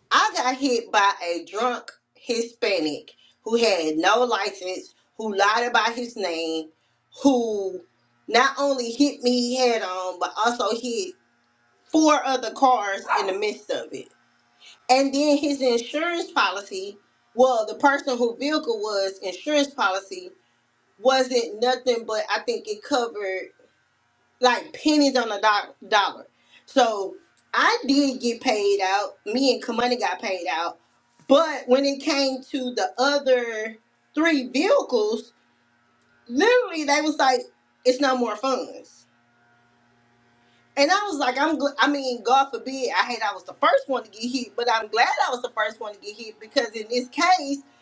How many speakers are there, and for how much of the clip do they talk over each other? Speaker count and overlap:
1, no overlap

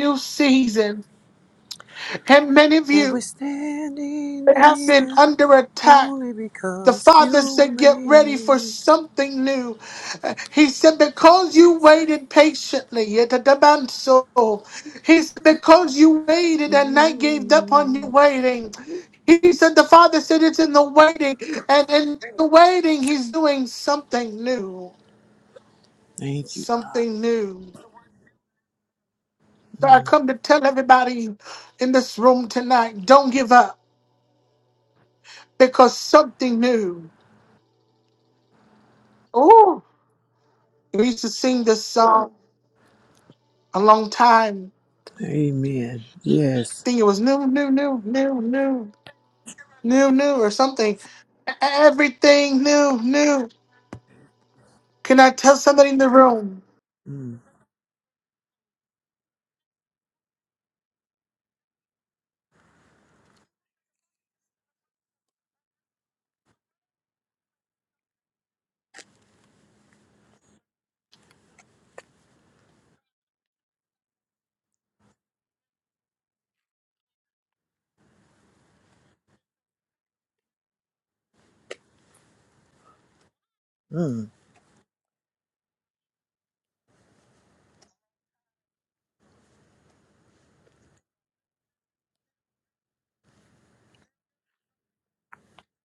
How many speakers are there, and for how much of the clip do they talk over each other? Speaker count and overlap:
2, about 5%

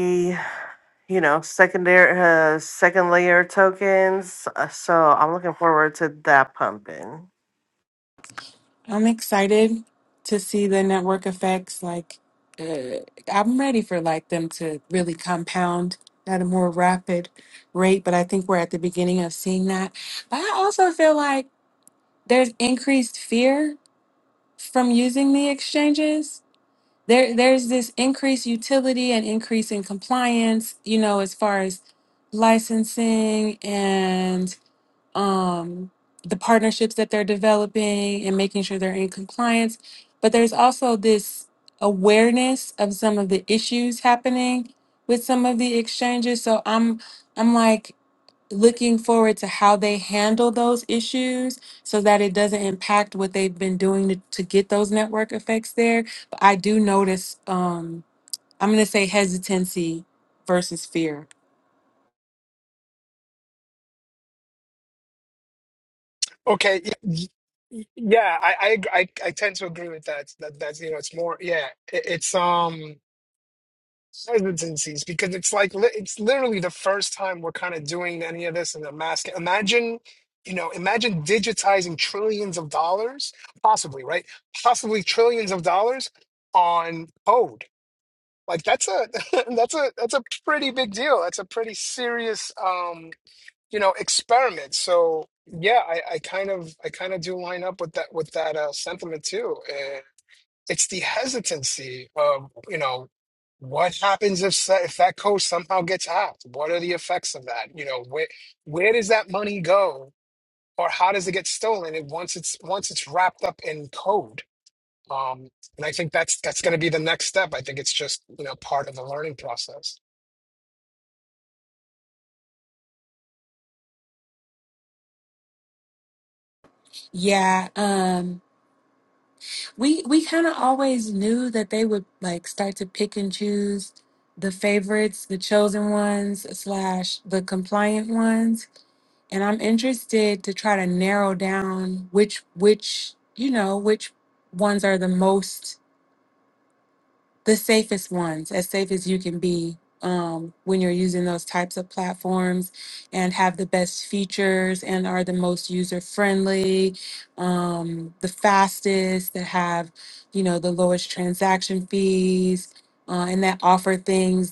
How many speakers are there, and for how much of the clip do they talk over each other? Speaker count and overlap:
3, no overlap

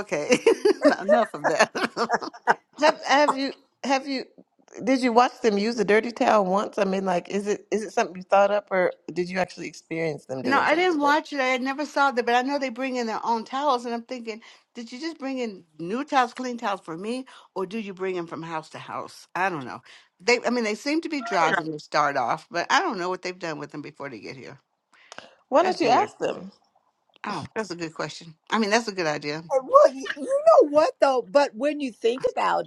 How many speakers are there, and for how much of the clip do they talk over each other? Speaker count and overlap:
3, about 4%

